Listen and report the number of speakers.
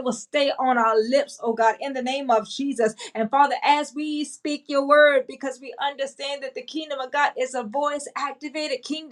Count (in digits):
1